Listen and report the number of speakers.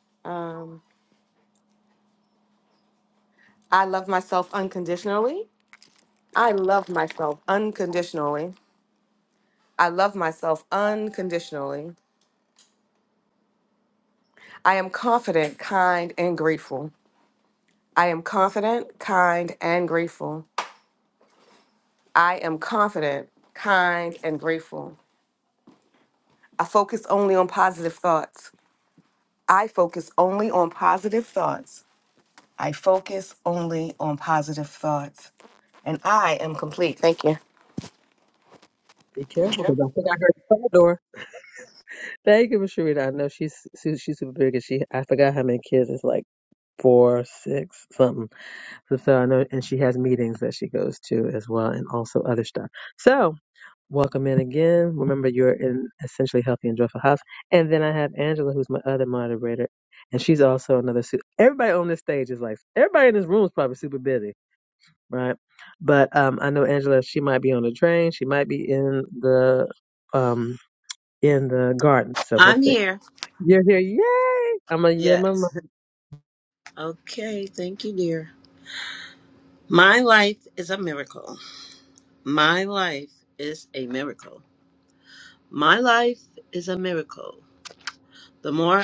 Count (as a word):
three